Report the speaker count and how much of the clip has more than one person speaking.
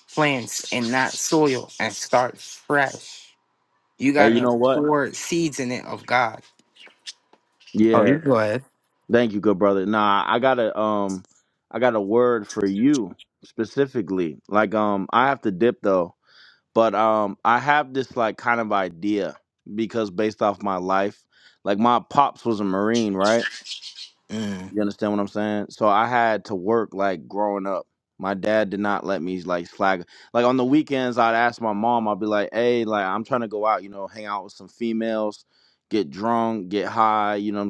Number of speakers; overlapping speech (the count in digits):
2, about 3%